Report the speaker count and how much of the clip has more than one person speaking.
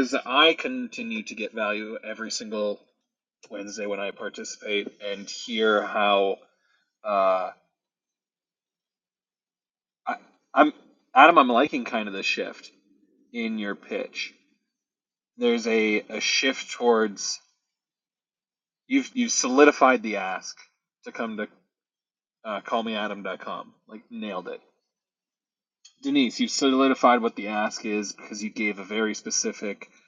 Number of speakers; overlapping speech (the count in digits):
1, no overlap